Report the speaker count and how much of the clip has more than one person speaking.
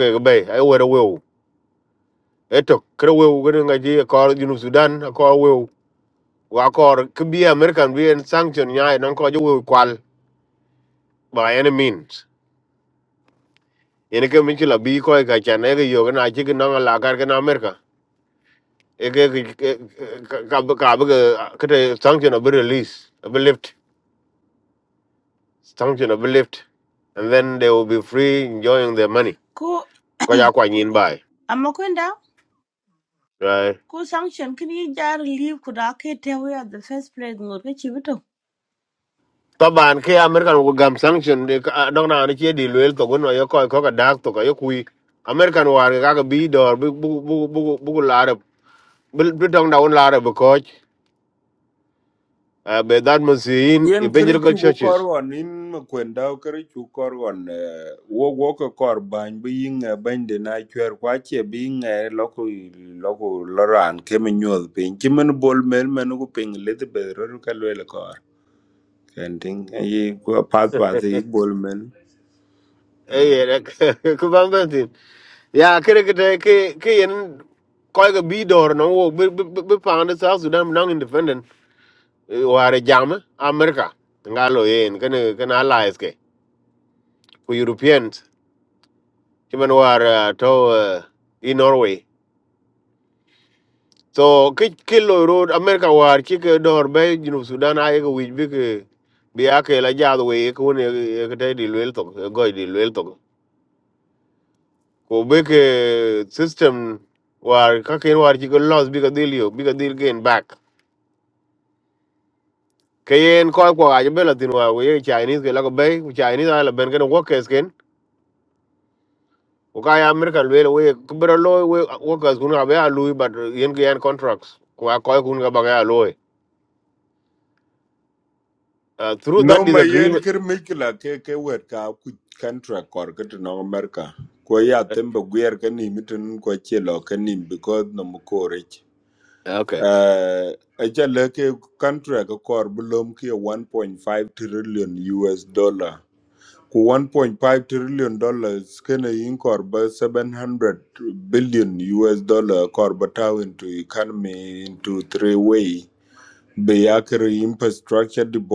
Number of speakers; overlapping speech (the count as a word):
three, about 1%